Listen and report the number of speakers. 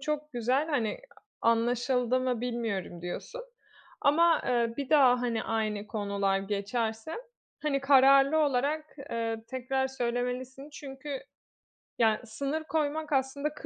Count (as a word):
one